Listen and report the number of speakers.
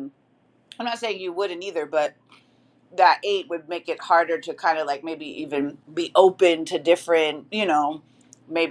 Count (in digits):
1